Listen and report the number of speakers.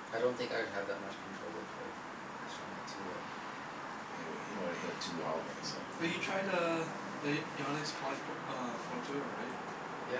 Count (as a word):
three